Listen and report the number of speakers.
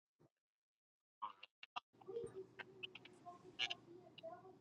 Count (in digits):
0